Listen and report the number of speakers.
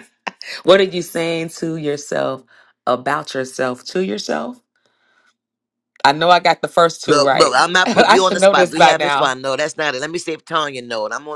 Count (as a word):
two